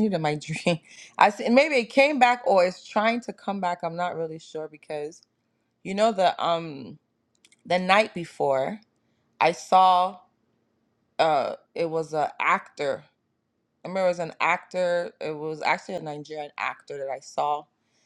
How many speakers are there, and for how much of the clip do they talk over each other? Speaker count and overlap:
1, no overlap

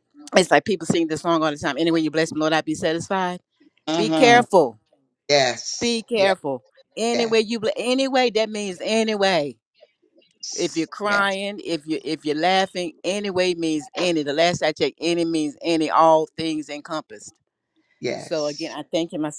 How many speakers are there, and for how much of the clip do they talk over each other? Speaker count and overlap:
2, about 5%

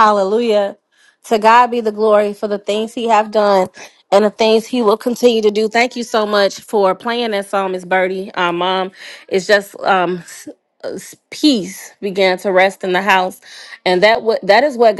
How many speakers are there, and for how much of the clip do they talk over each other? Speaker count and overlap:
1, no overlap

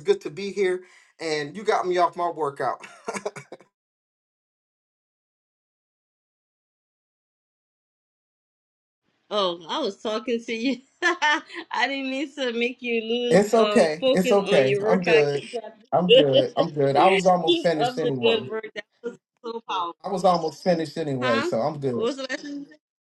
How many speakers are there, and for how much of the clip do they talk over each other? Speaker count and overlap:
2, about 15%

